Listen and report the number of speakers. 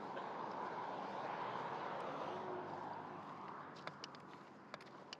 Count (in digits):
0